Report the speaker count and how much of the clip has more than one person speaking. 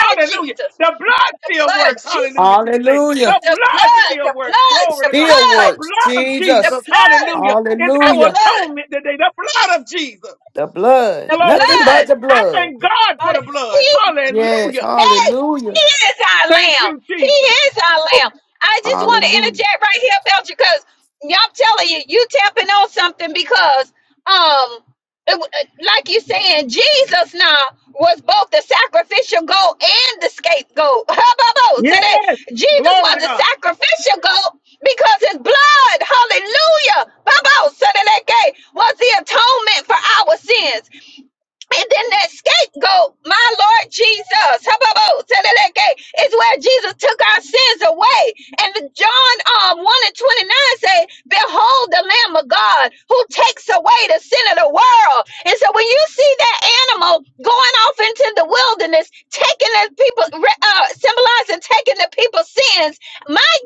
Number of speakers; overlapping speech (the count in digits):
3, about 22%